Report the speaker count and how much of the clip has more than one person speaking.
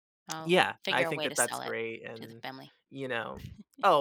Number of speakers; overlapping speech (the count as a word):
two, about 31%